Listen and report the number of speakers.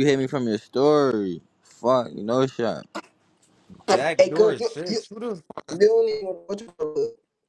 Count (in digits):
3